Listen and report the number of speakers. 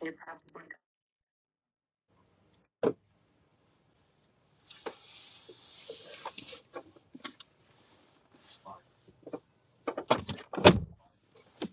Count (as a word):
zero